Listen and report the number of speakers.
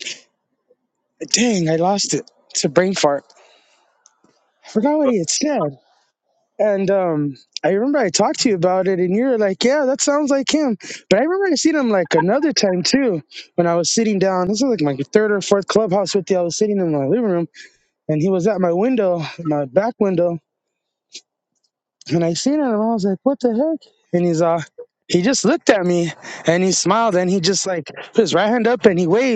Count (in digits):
1